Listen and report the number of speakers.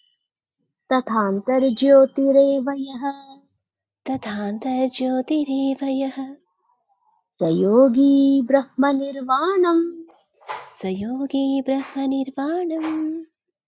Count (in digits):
2